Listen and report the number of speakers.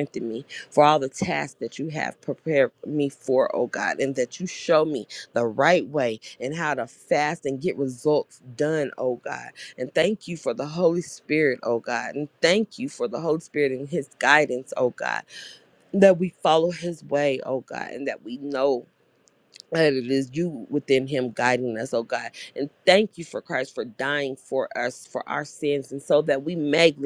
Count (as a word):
one